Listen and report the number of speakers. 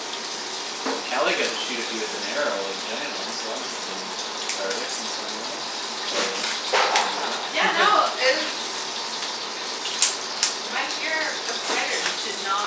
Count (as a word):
two